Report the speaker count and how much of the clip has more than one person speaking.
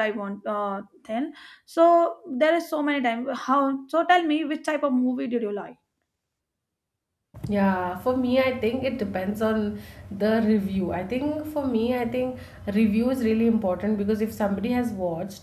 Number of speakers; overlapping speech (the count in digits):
2, no overlap